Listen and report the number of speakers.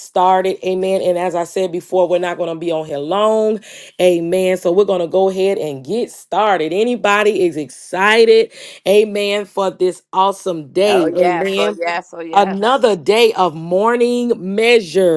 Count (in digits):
2